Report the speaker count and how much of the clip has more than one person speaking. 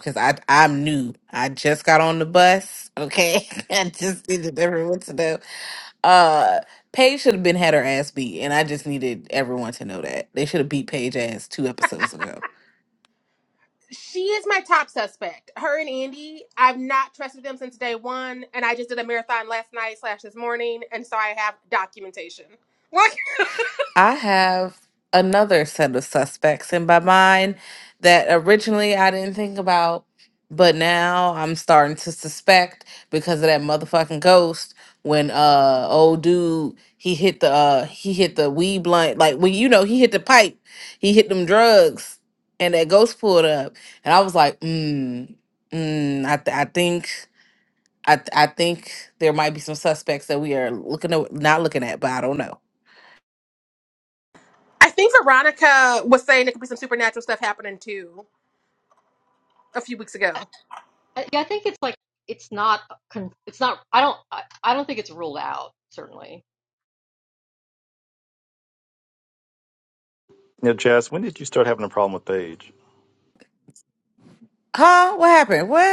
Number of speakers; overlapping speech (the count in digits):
4, no overlap